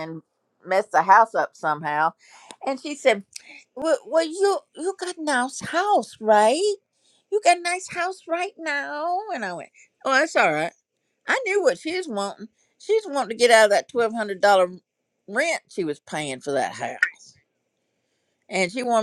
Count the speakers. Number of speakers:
1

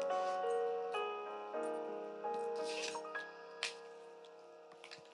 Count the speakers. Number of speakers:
0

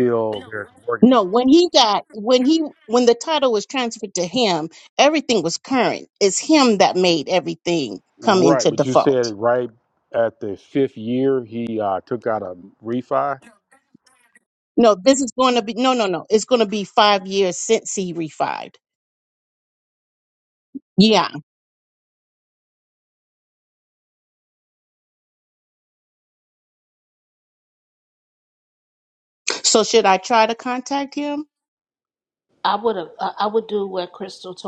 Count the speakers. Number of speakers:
3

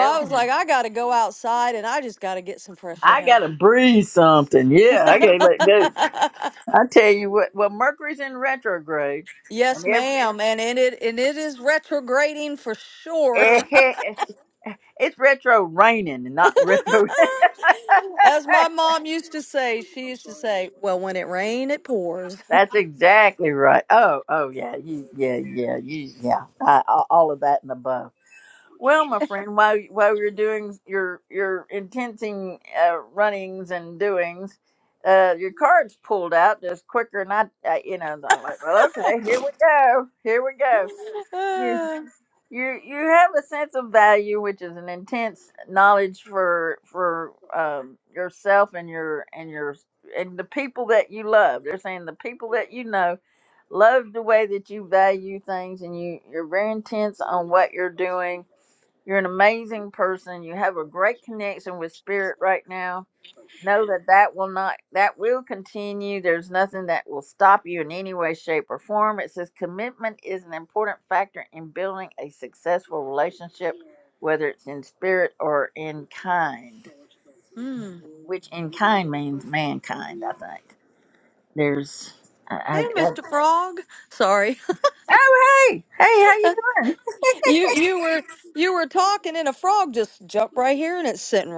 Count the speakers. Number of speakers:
2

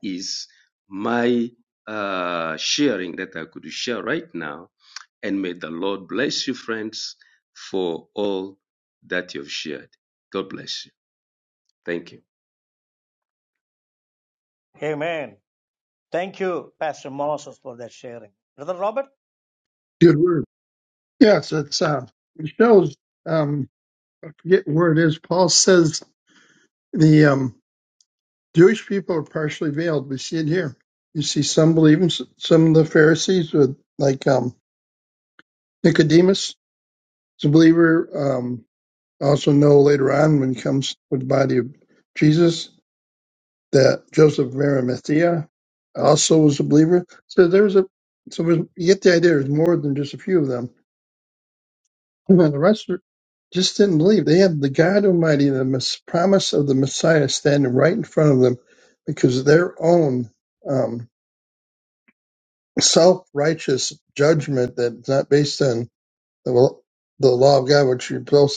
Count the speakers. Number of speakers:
3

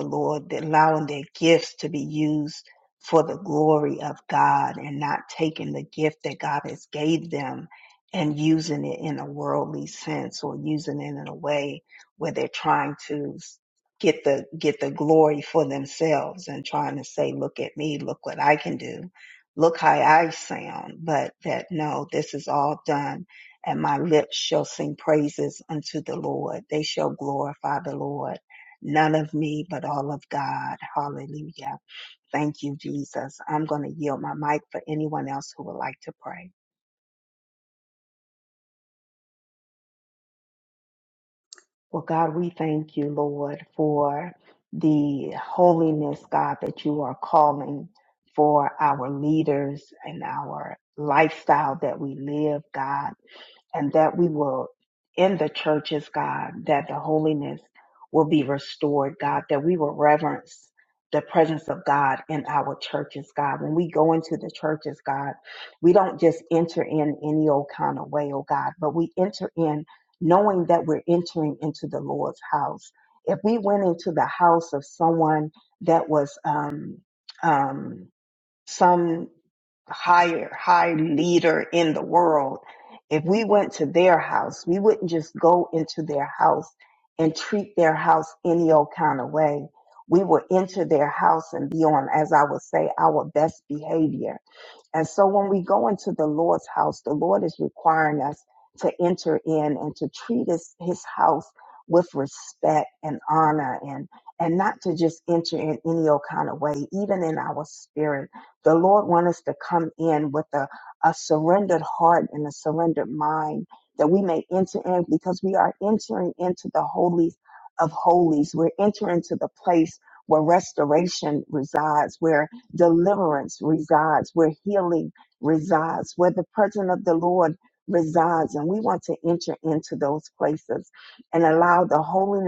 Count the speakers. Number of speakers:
1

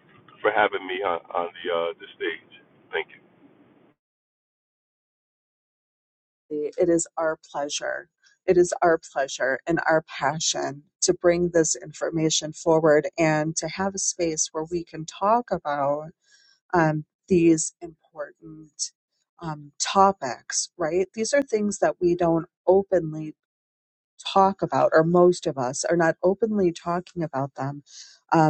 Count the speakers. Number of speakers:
2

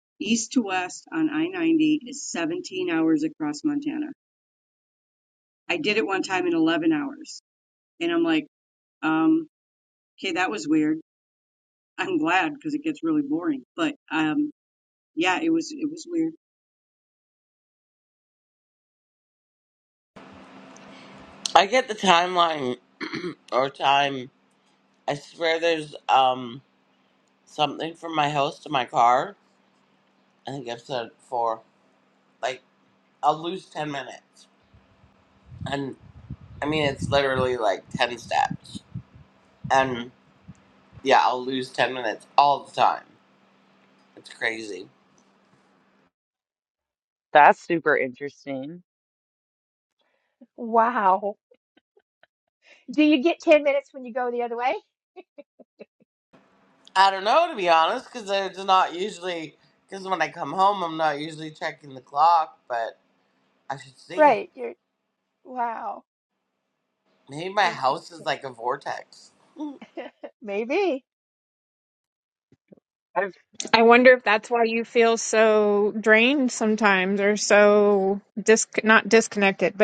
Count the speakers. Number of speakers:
5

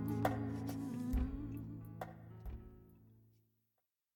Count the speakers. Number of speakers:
0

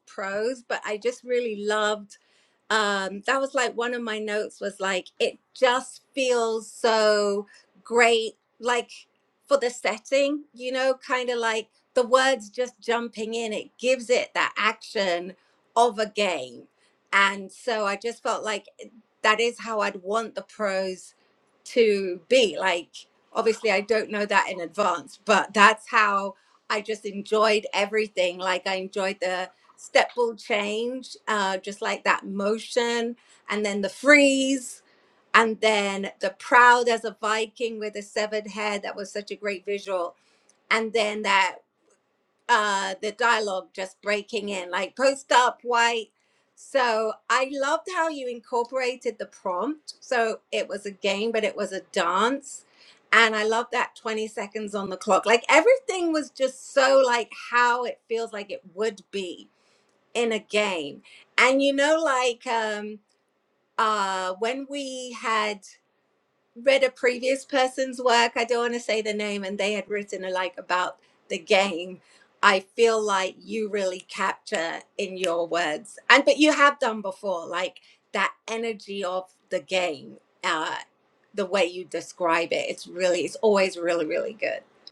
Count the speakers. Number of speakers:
1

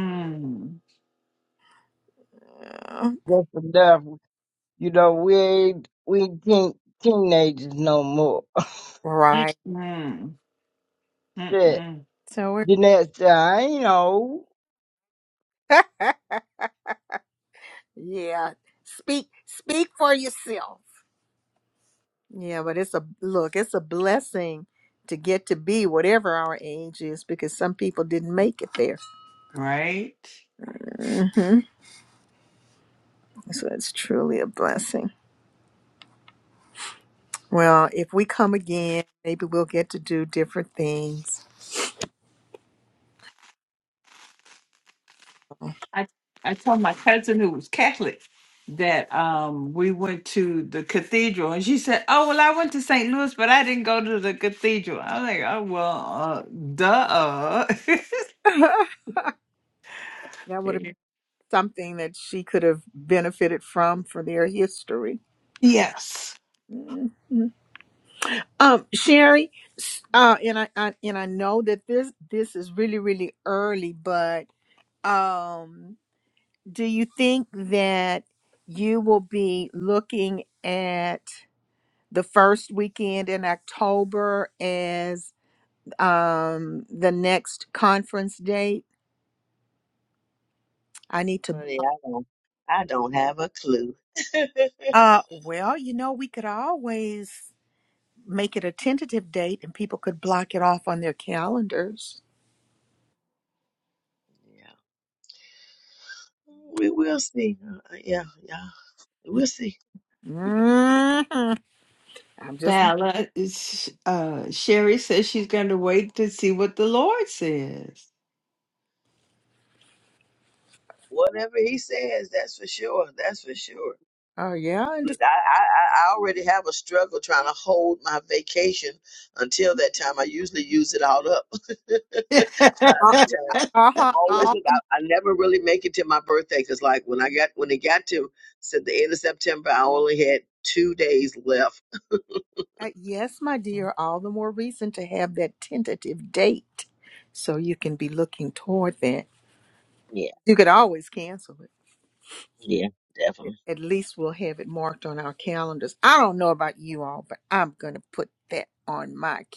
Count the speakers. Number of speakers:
4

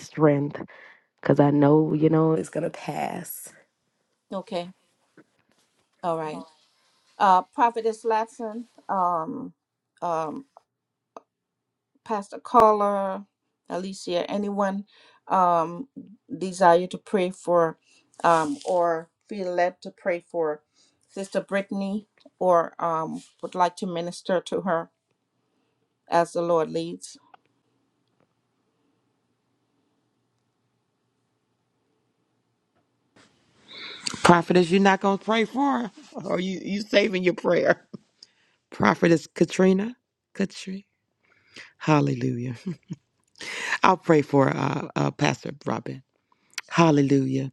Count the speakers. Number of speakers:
3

